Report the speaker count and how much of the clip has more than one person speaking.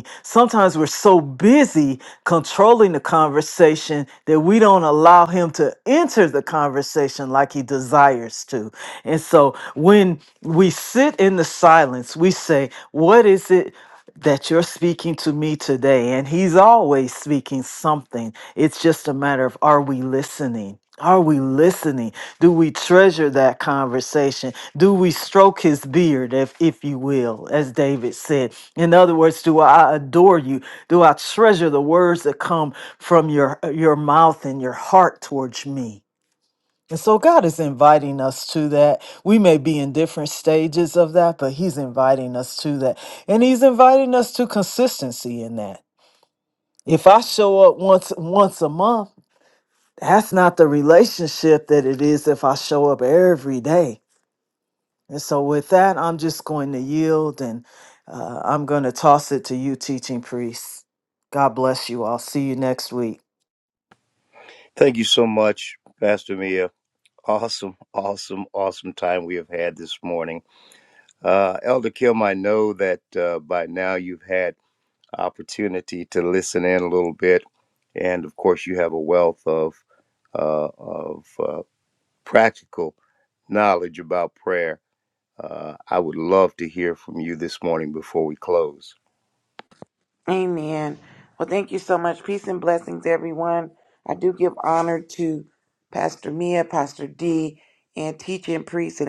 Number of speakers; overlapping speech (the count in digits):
3, no overlap